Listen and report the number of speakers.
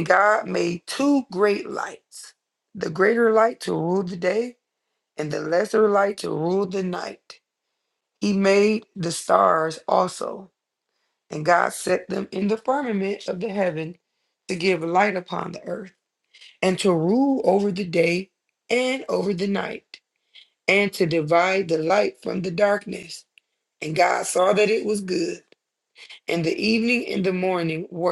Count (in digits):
1